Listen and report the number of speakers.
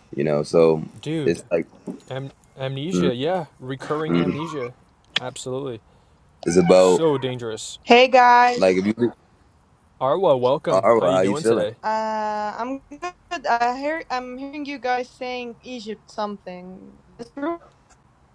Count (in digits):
3